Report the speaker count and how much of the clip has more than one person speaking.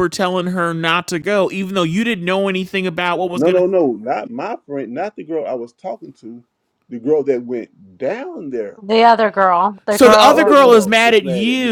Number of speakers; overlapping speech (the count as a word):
three, about 17%